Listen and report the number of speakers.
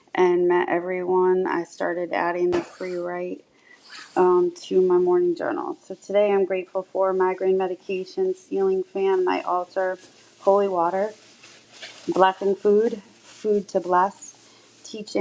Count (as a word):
one